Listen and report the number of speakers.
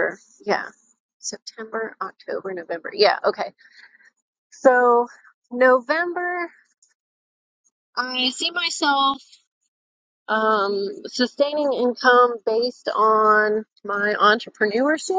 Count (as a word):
one